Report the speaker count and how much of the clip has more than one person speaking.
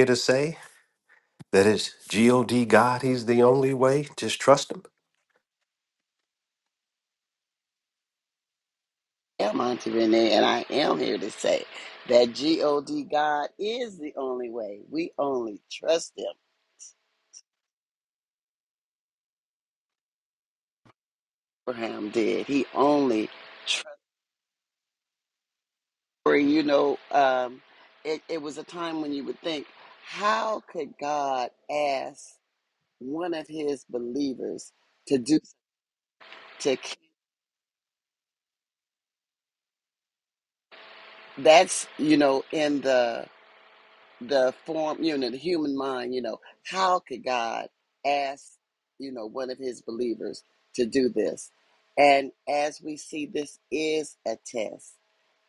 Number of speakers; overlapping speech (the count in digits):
2, no overlap